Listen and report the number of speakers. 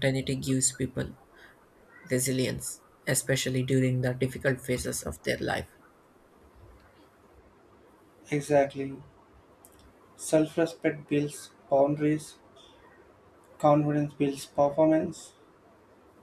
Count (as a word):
two